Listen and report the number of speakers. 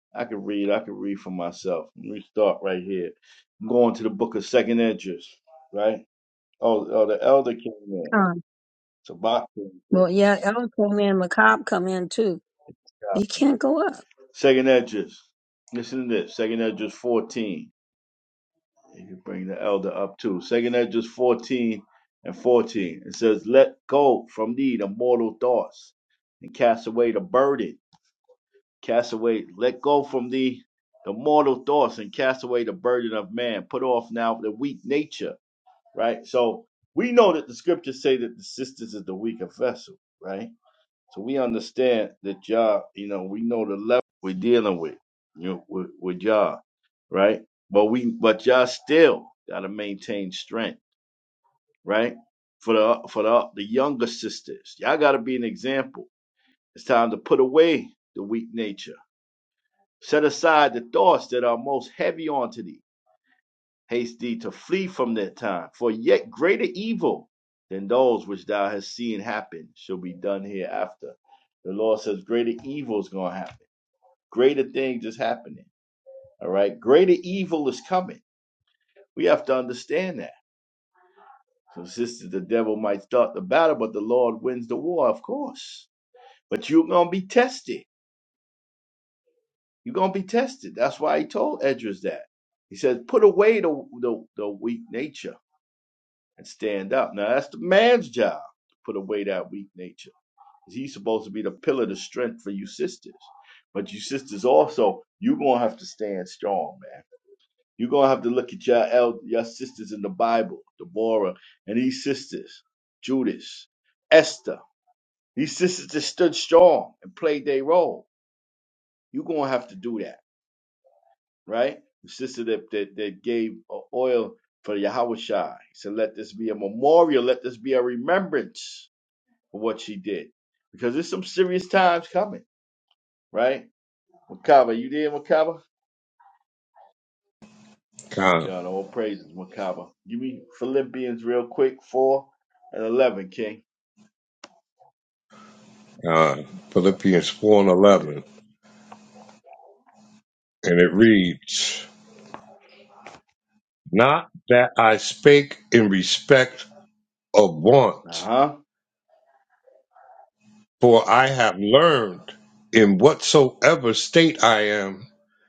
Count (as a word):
three